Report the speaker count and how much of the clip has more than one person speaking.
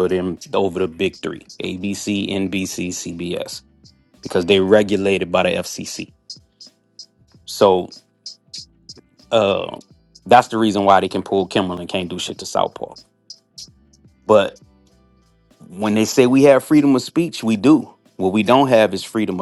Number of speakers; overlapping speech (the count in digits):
1, no overlap